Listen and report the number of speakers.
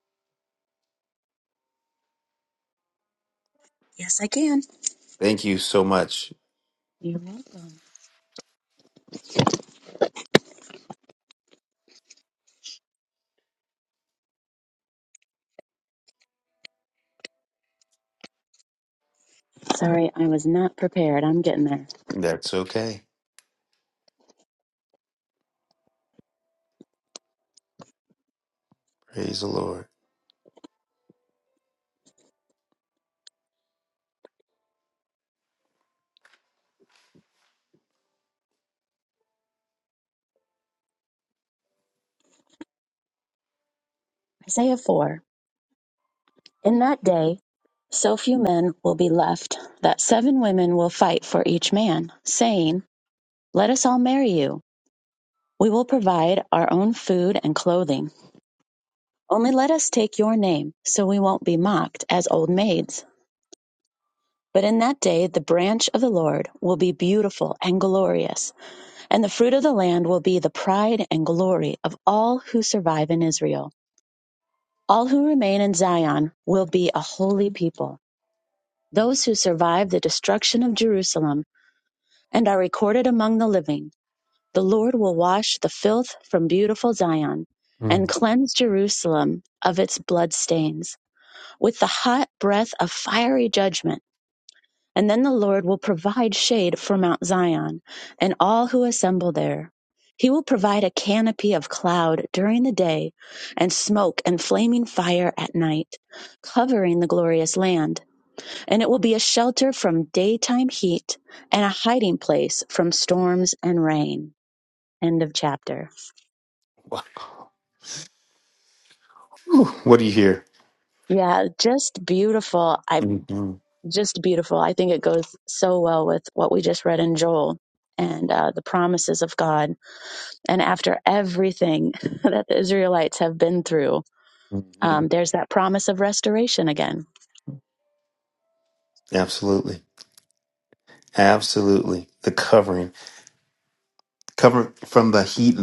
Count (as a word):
two